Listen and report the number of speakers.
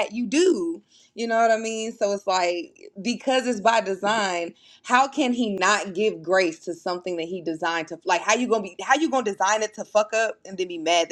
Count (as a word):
one